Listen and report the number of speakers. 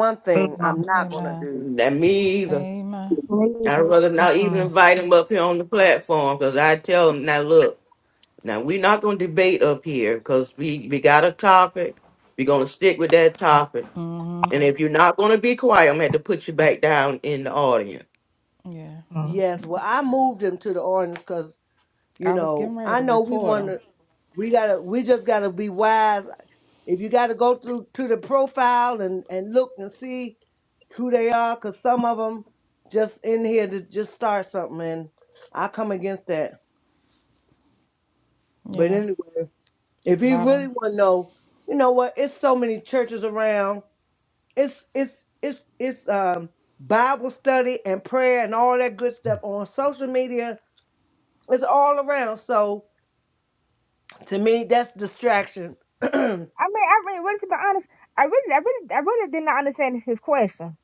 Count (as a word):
four